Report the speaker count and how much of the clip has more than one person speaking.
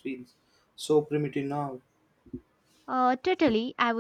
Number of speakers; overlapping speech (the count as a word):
two, no overlap